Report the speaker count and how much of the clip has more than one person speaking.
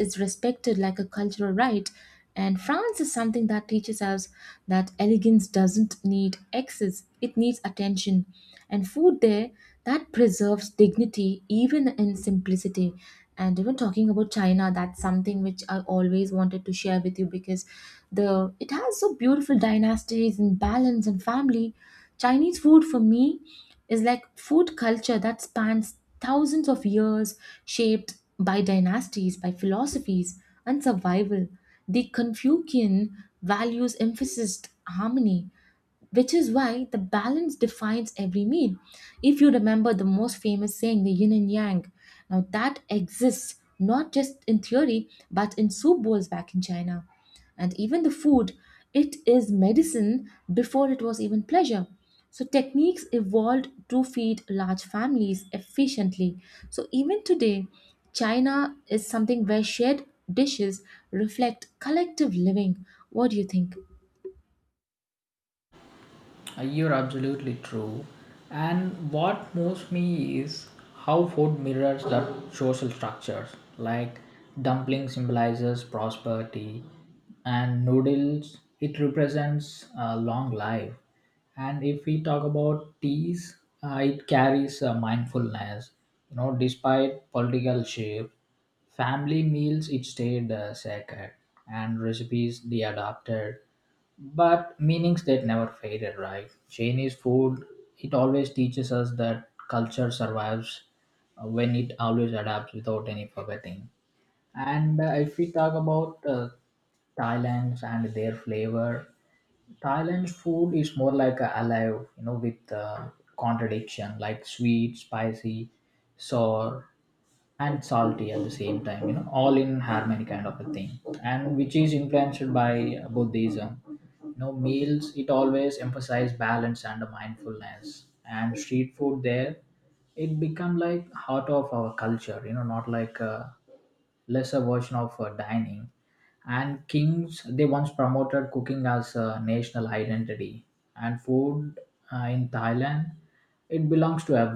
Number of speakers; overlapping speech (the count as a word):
two, no overlap